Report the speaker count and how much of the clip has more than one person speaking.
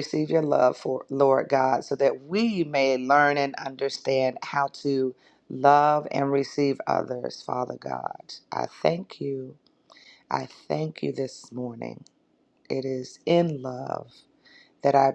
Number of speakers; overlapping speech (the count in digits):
1, no overlap